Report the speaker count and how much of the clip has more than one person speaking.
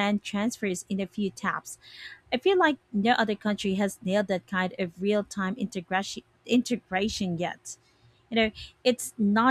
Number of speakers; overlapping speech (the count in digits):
1, no overlap